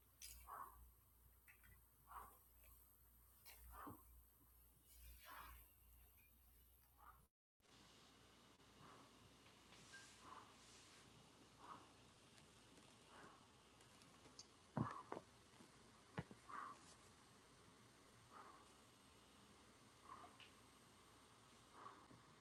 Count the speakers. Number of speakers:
zero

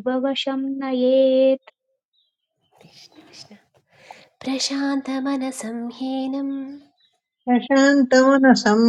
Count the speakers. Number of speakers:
three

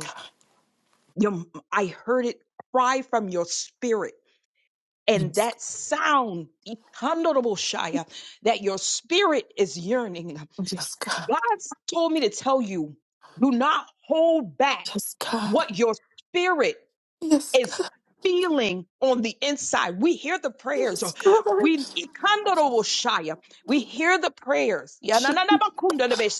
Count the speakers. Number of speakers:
two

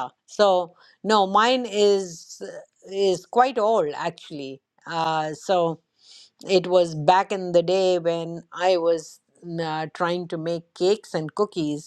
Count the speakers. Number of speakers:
one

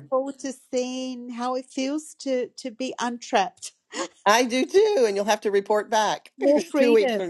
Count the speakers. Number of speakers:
two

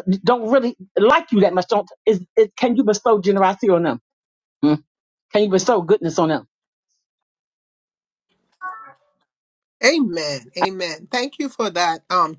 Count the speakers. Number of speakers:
two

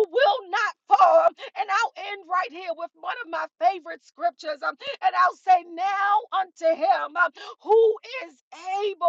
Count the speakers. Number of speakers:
one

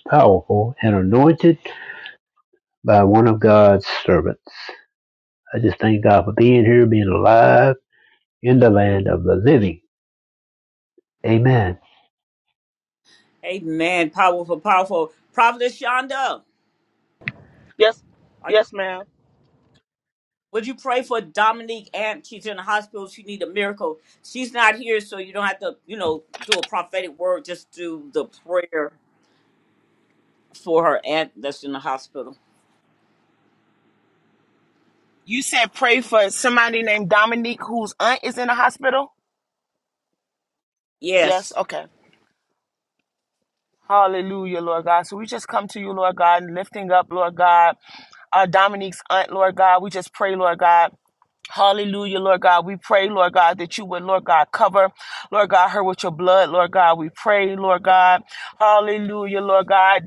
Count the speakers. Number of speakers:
three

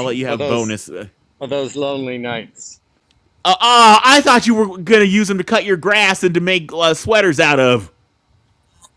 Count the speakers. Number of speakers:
two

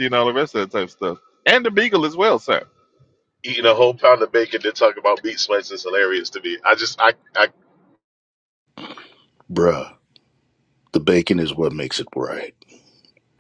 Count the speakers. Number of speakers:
three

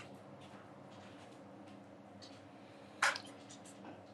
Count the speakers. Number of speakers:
zero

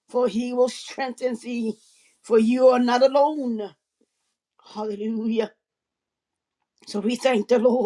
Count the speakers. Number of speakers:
one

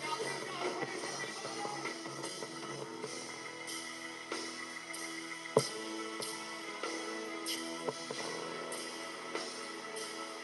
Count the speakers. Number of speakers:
zero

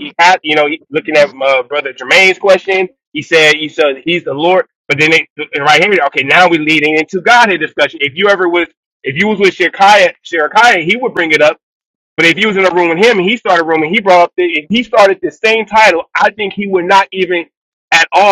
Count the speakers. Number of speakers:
one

